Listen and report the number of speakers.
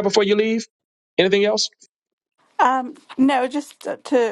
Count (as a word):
two